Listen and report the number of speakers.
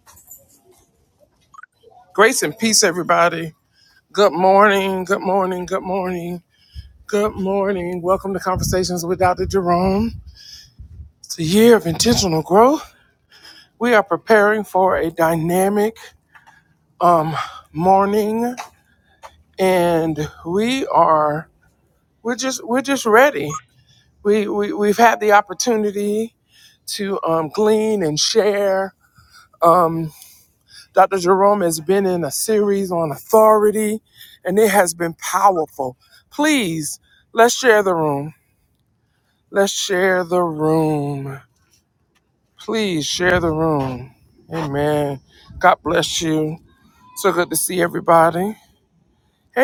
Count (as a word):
one